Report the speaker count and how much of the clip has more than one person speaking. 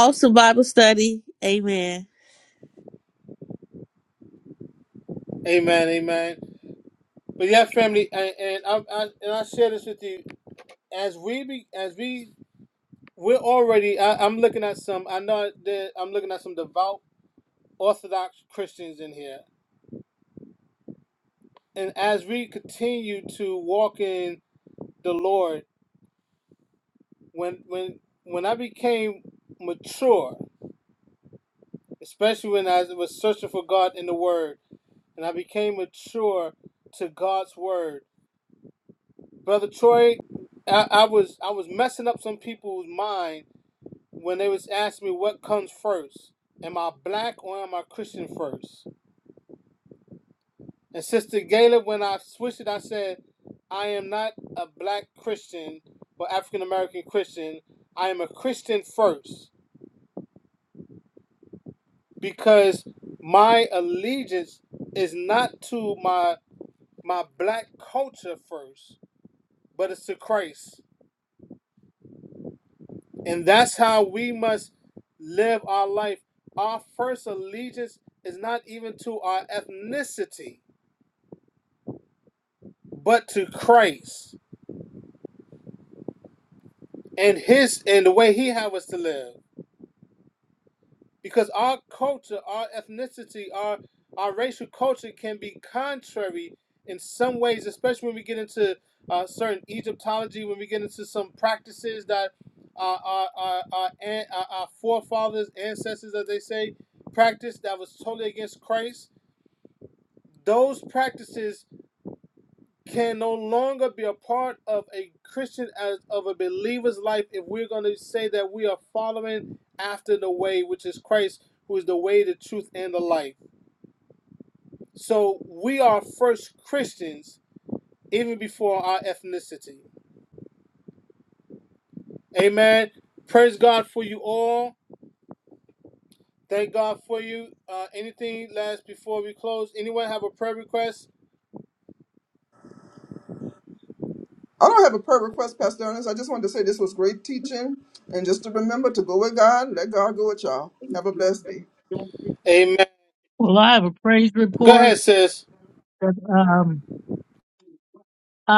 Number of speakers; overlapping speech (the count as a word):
four, under 1%